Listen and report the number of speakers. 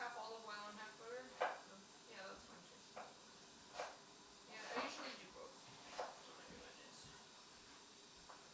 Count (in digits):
1